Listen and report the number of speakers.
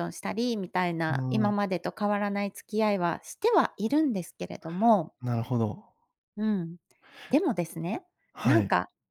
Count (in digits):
2